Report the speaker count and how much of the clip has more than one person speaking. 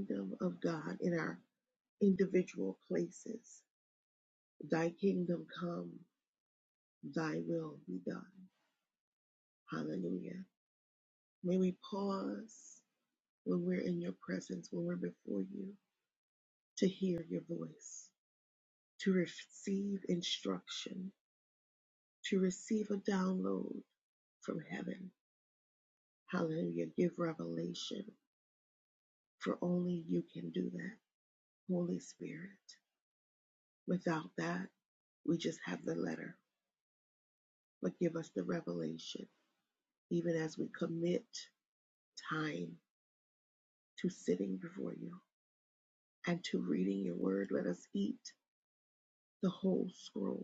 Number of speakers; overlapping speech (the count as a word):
one, no overlap